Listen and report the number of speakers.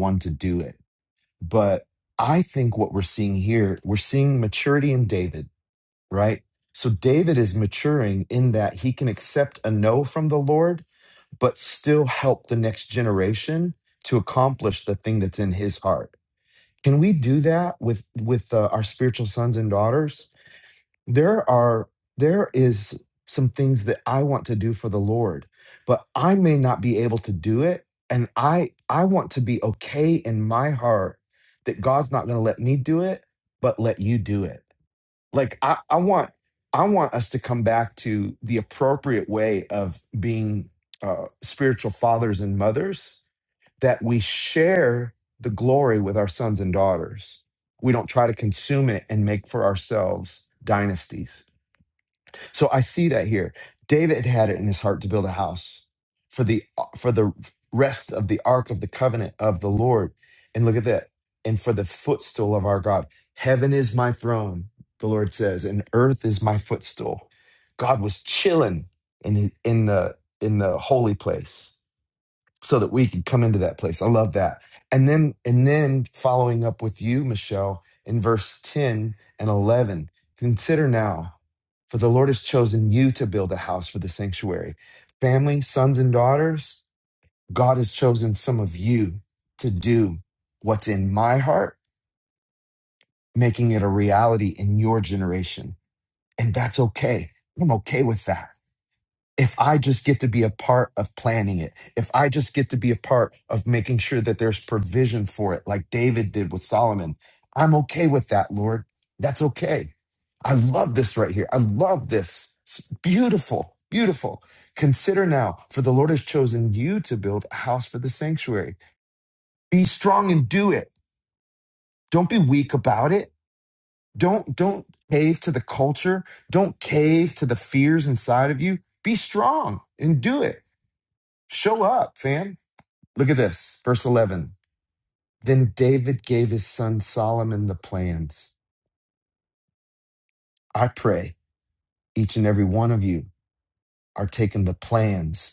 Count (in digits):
1